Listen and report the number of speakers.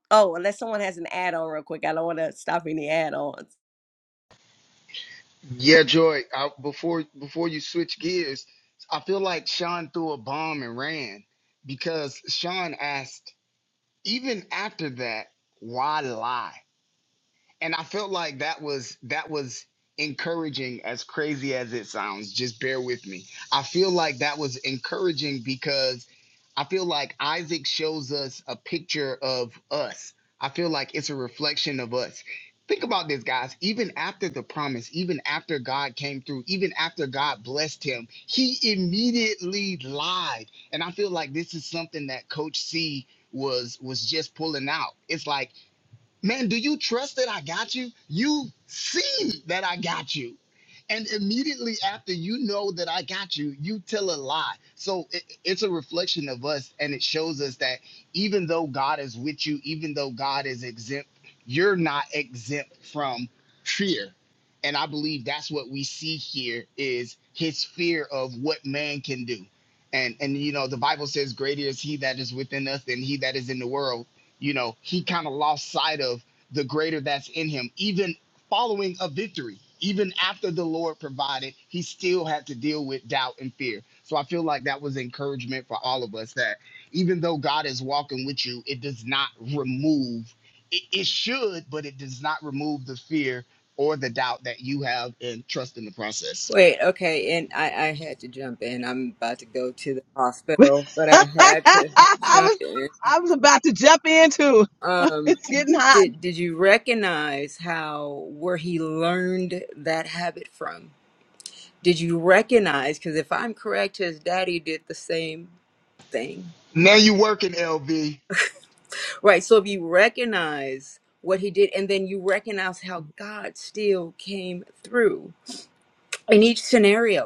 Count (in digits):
4